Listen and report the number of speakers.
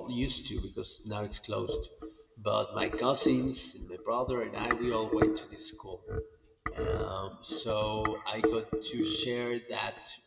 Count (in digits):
1